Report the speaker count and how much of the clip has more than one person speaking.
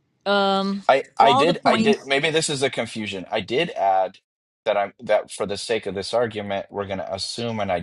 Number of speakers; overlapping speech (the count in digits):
2, about 11%